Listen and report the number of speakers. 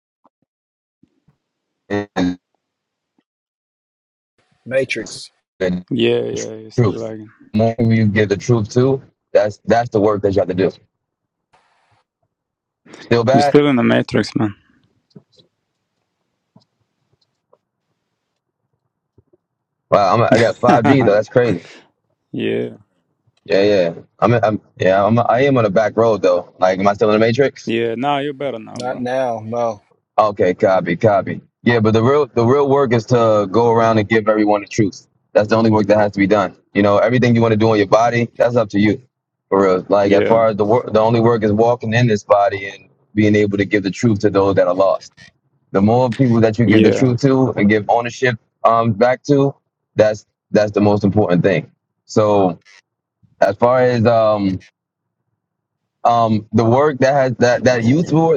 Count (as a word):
three